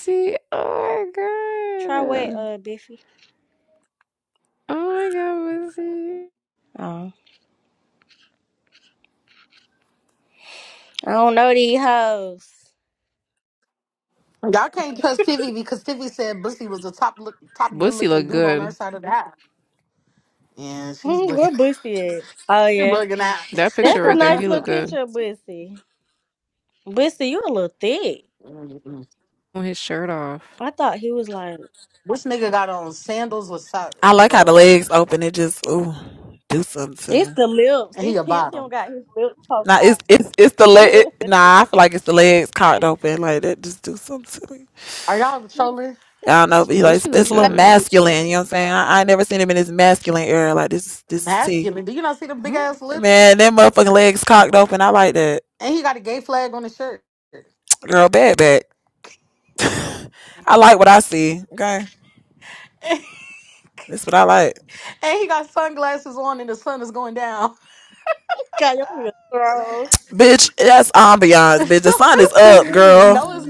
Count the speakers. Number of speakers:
4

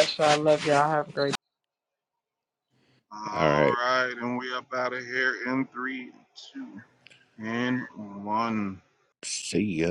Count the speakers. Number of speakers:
3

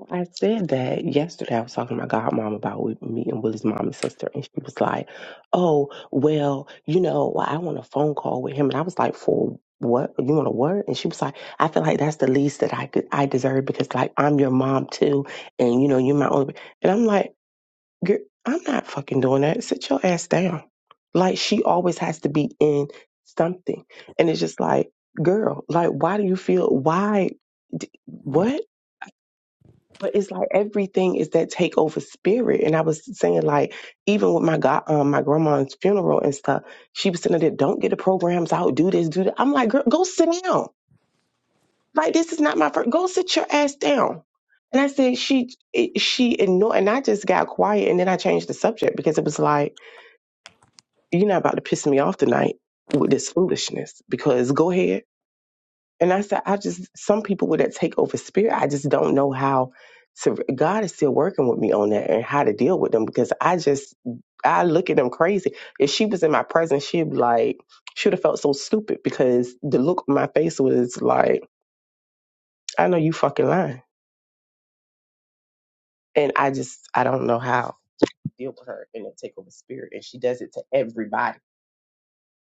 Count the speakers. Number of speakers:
1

